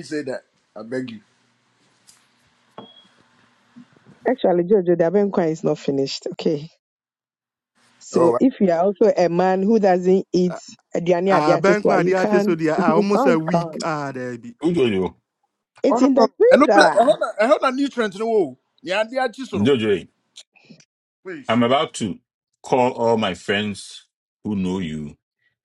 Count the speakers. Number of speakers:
4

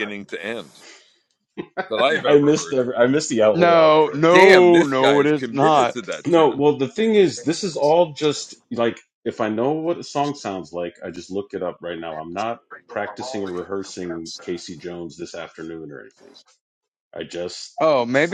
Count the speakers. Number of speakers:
3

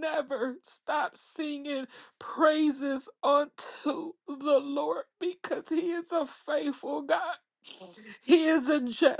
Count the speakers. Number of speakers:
1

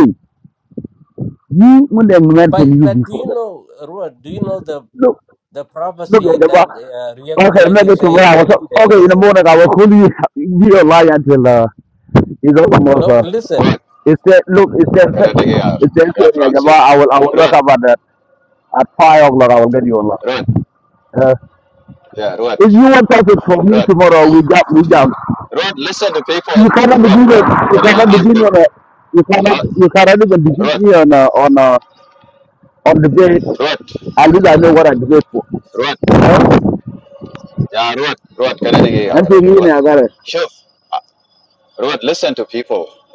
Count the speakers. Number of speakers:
3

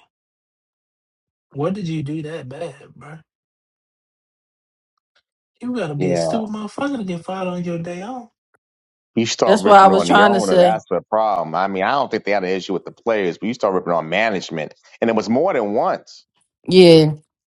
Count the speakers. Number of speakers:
3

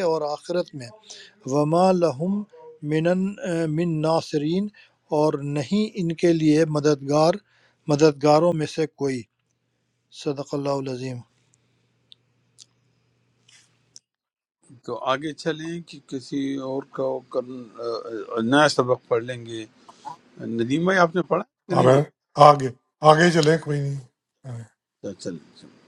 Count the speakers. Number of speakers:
3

